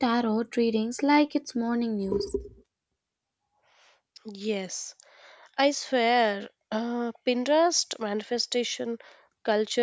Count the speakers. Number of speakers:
2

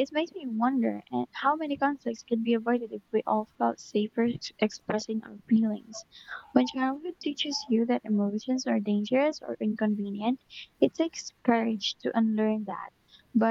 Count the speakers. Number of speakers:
1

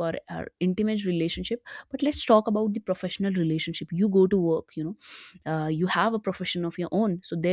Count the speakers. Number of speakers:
1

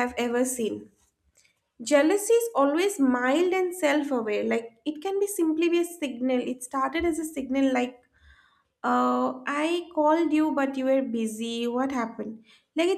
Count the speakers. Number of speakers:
1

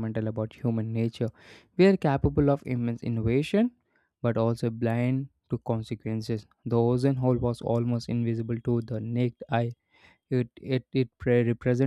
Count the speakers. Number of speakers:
1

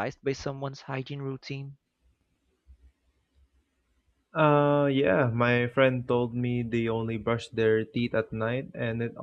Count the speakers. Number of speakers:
2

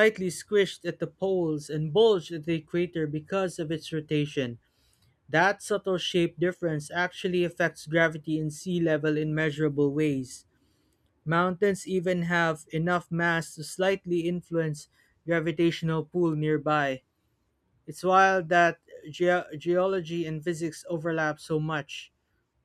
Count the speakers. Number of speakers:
1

